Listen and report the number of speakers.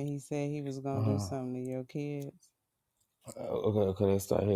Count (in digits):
2